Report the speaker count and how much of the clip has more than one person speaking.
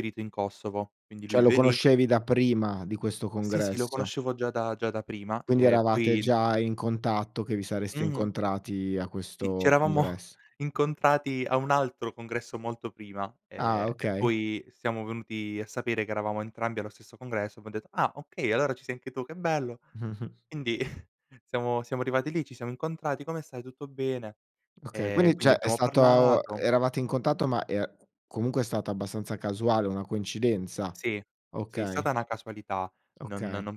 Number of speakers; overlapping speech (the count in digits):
2, about 18%